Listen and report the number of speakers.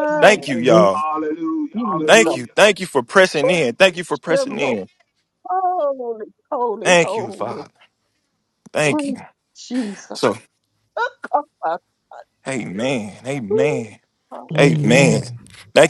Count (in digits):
4